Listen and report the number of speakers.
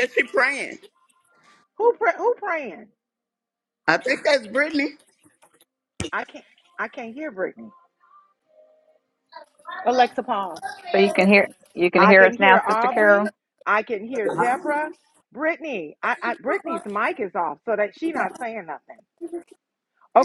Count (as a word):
three